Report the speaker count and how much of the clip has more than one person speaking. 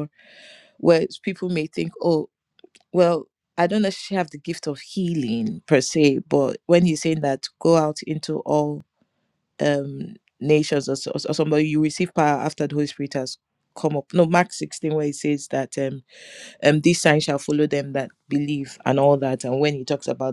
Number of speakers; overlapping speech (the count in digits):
1, no overlap